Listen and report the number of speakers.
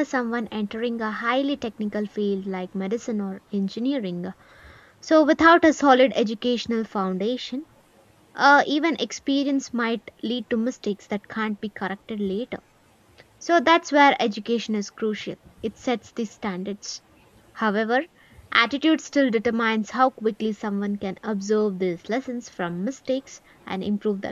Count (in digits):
1